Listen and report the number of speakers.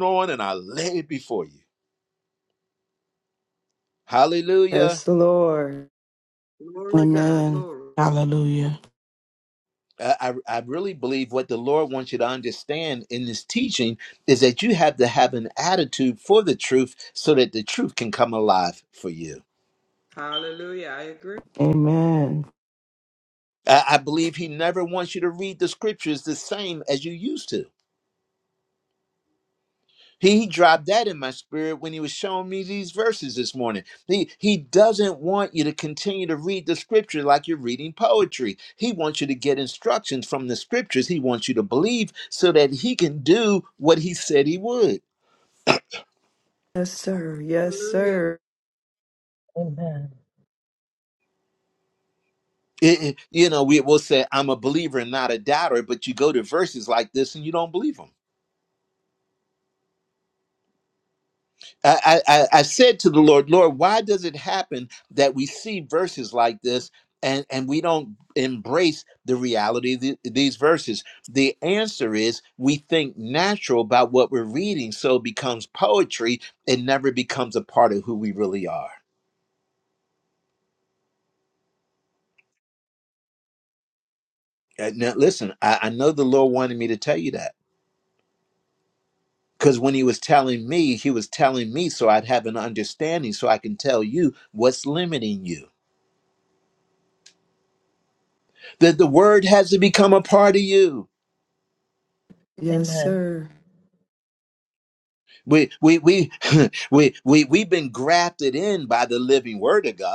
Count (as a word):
five